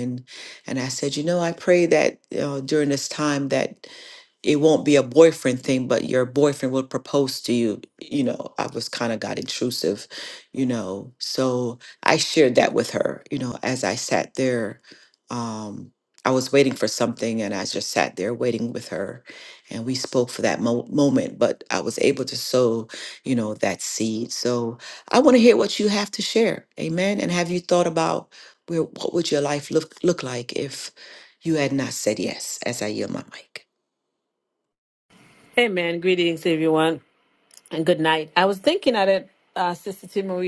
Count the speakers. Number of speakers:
two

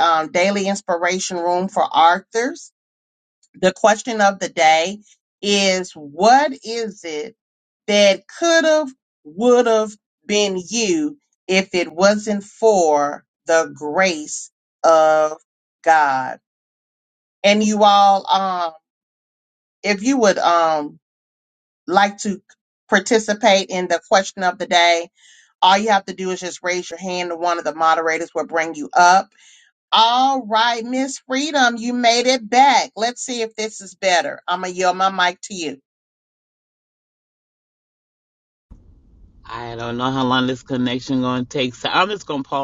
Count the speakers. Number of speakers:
two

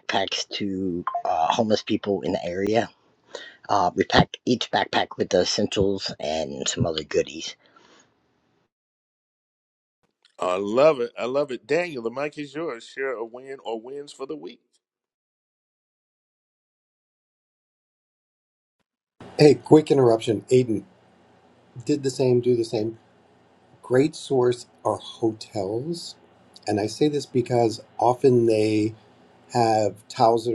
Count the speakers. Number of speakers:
three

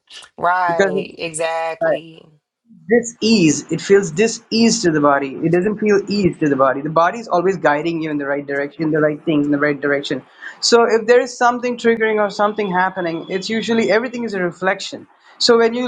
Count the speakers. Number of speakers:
two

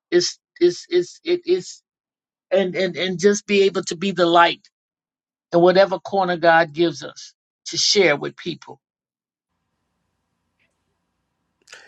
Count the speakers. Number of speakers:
one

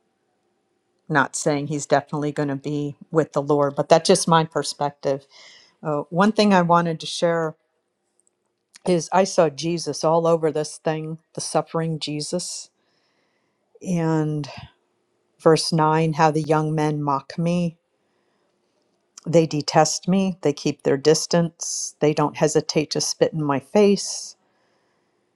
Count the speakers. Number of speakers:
one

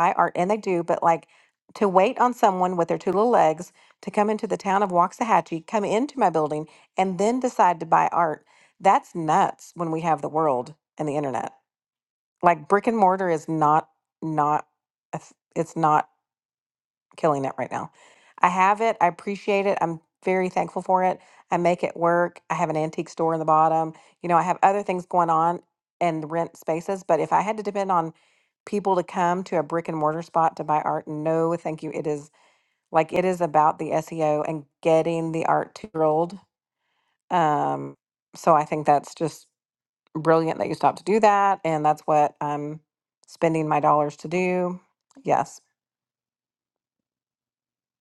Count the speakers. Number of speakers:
one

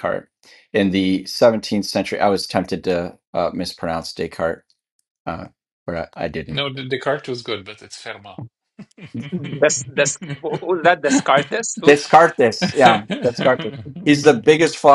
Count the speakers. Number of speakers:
three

